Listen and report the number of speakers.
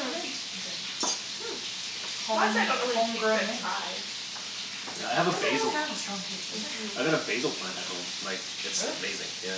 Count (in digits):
3